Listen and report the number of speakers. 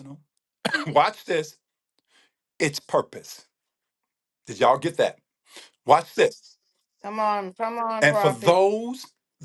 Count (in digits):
2